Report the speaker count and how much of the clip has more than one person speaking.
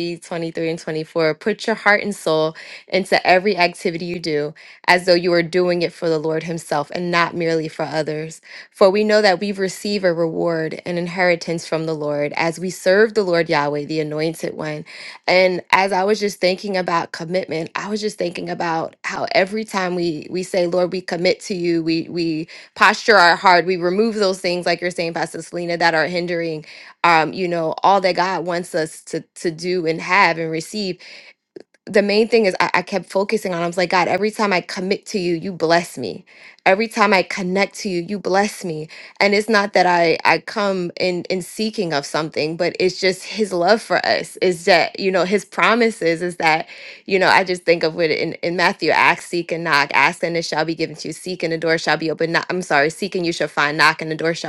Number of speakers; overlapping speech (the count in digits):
1, no overlap